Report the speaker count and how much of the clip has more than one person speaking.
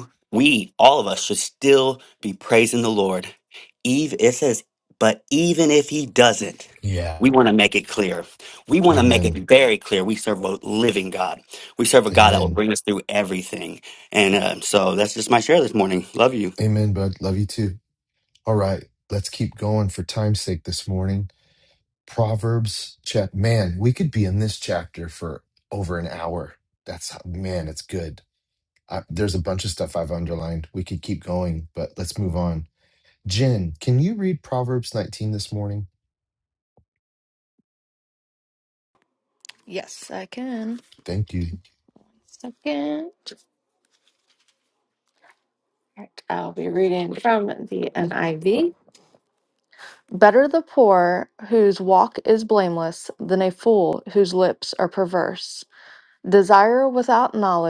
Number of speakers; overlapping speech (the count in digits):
3, about 2%